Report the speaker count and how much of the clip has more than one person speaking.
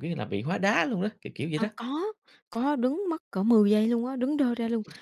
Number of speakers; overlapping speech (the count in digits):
2, about 3%